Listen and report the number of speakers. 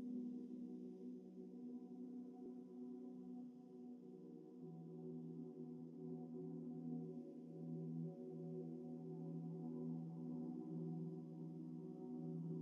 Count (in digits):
0